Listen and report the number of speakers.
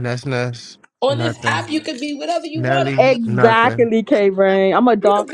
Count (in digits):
3